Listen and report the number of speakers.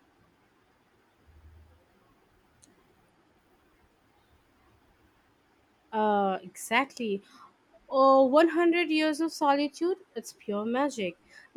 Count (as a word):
one